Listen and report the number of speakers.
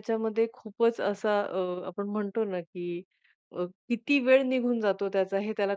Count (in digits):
1